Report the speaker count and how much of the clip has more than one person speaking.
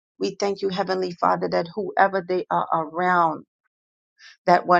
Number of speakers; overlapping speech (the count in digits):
1, no overlap